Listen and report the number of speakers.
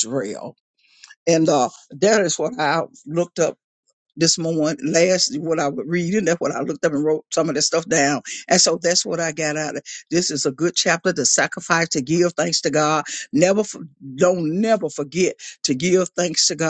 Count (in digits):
1